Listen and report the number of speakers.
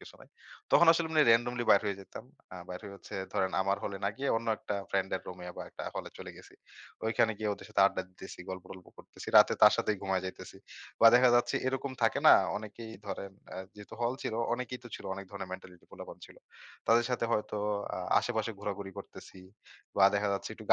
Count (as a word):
one